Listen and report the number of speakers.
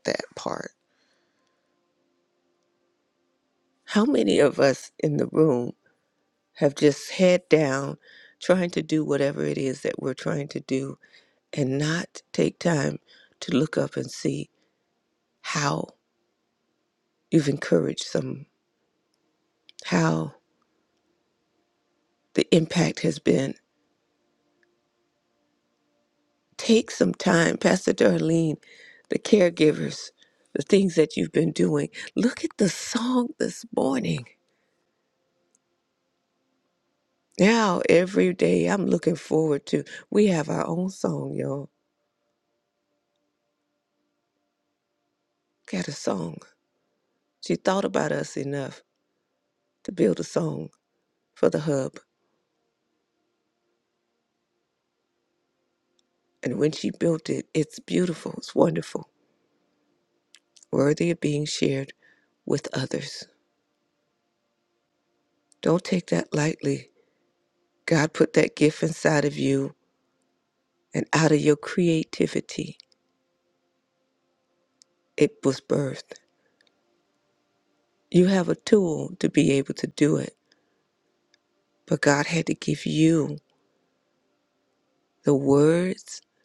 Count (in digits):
1